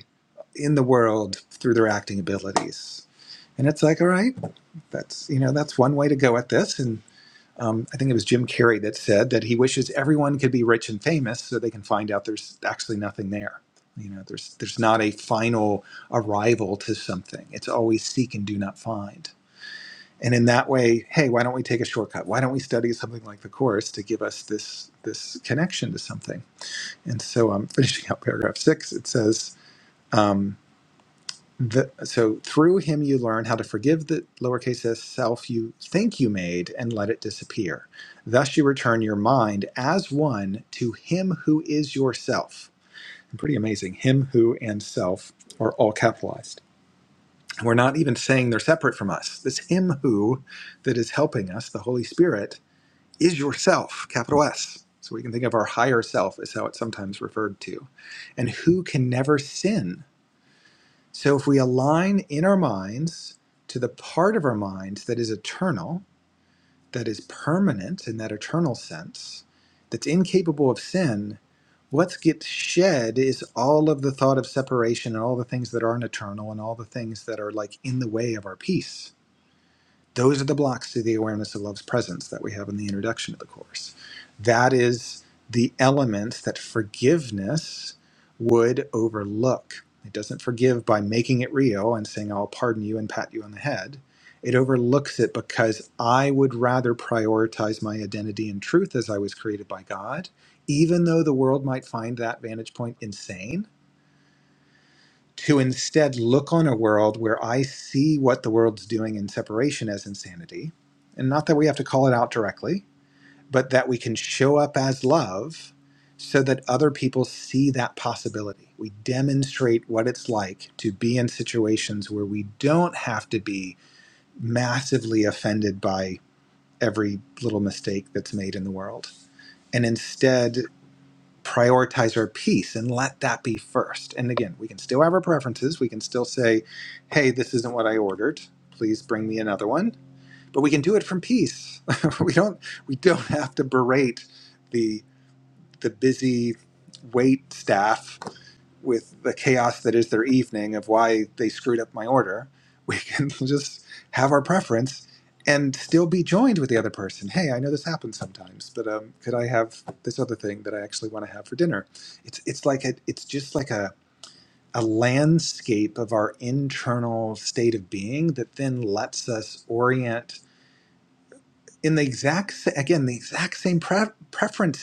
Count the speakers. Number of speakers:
1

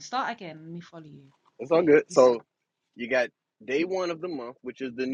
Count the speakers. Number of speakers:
2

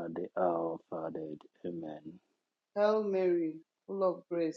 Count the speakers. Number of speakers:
2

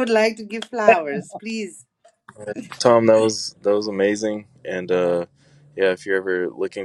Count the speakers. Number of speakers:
2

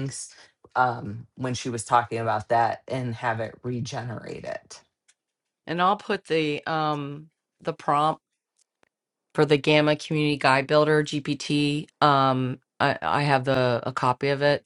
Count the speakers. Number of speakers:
2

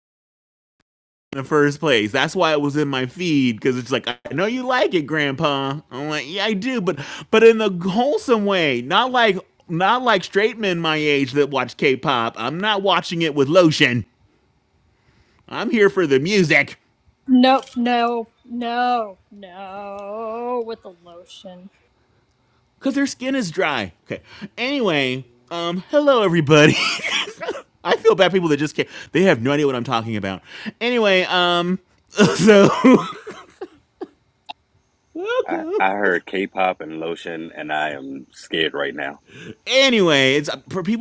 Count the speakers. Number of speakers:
3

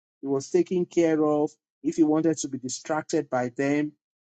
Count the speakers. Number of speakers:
1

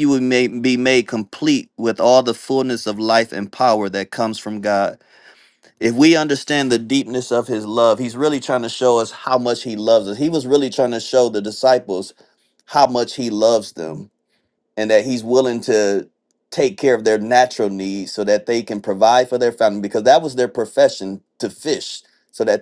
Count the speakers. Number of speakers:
1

